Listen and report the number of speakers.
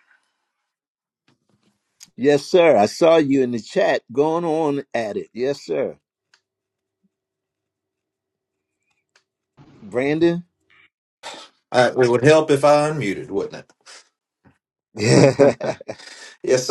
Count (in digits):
2